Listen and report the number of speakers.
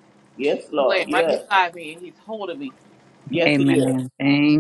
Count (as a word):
three